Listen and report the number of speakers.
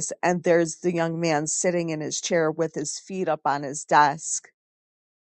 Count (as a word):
one